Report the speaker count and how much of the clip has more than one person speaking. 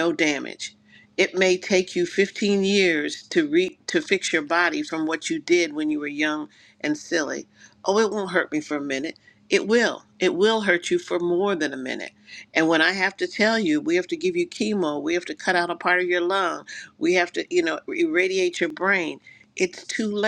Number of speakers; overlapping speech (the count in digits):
1, no overlap